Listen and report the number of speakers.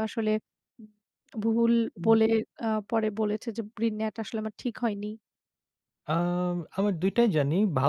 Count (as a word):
two